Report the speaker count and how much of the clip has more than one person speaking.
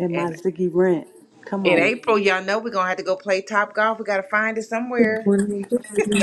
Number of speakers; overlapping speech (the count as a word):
three, about 14%